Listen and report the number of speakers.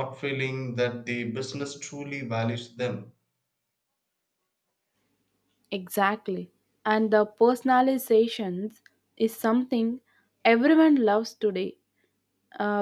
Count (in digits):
2